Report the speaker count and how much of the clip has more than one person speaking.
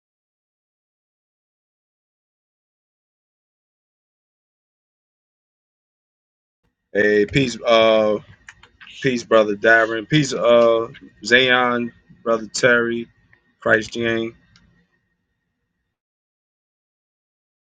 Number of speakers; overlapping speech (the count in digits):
1, no overlap